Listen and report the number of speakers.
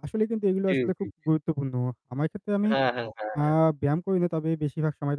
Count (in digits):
2